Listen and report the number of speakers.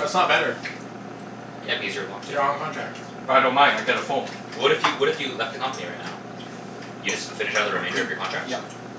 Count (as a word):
three